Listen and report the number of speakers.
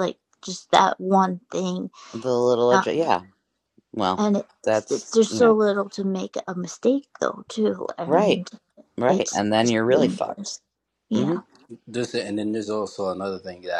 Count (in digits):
3